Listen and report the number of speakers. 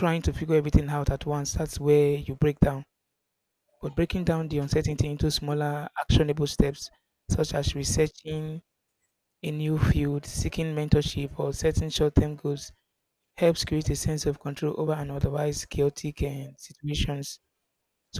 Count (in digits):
1